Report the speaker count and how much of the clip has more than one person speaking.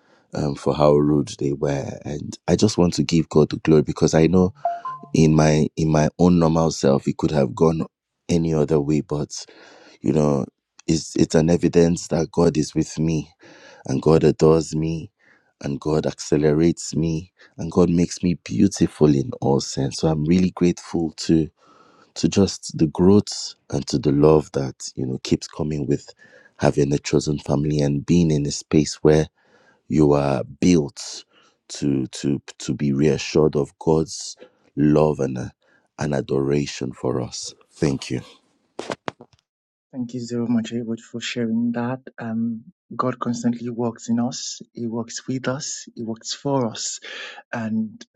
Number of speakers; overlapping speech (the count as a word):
two, no overlap